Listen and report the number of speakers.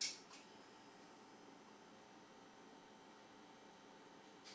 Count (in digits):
0